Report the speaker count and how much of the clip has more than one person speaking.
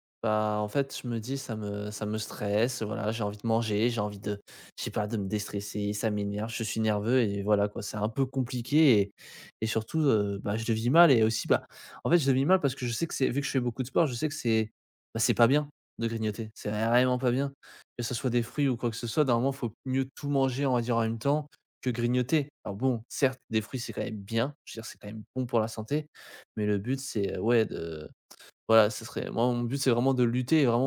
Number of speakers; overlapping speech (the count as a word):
one, no overlap